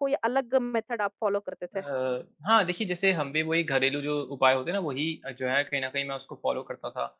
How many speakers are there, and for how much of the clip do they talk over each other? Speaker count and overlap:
two, about 1%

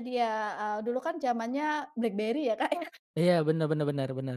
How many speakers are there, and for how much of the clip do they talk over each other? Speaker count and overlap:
two, no overlap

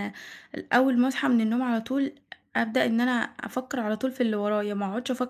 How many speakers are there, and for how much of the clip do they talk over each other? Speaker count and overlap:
one, no overlap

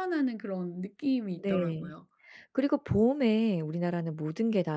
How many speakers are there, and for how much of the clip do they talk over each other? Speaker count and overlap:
two, about 10%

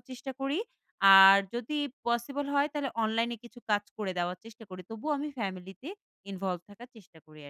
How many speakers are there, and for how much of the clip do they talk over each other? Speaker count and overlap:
one, no overlap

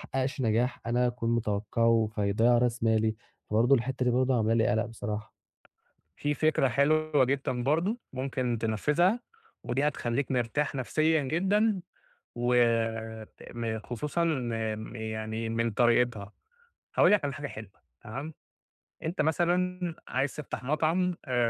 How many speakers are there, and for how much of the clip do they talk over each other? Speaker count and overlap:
two, no overlap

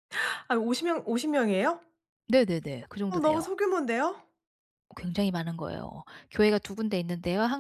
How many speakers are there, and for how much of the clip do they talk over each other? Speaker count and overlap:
two, about 5%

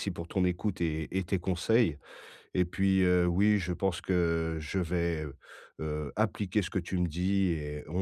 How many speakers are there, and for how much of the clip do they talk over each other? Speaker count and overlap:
one, no overlap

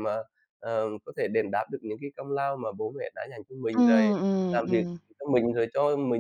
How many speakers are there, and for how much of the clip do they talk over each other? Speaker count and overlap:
two, about 12%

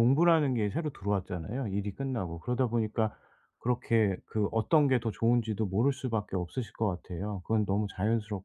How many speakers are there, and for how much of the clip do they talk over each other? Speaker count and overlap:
one, no overlap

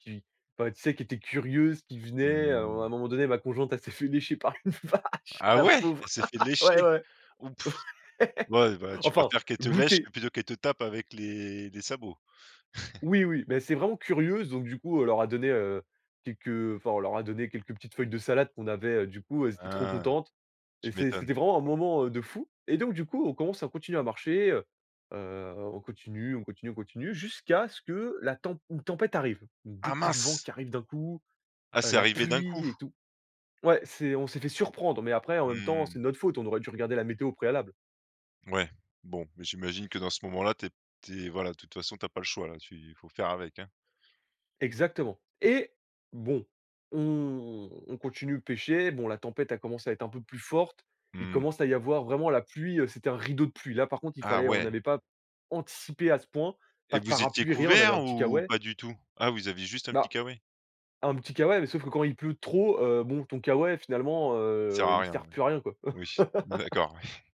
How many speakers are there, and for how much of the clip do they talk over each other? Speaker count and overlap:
two, about 12%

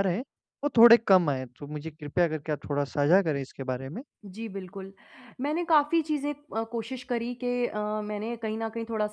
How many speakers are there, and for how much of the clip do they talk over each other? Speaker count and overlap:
two, no overlap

